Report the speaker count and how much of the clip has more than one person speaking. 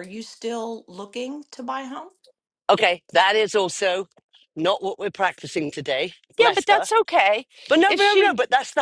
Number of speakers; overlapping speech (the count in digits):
3, about 11%